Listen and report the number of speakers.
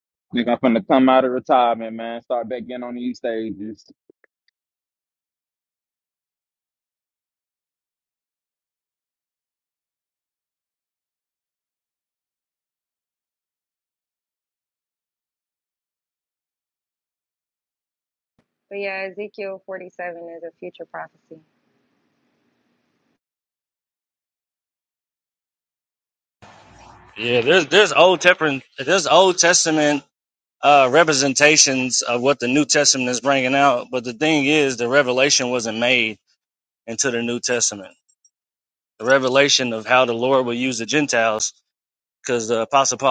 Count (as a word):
three